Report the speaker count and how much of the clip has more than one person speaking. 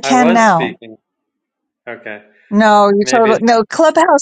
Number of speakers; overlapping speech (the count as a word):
two, about 26%